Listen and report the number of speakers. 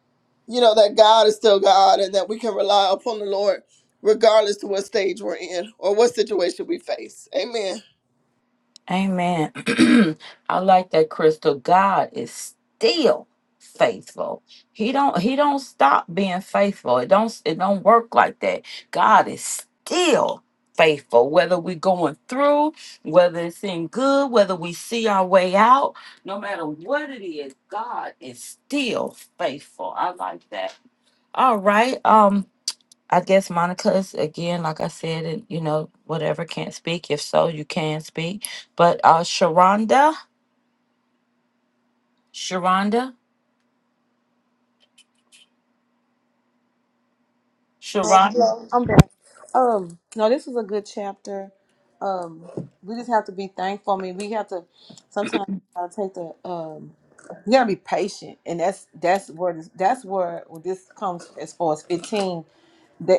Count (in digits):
3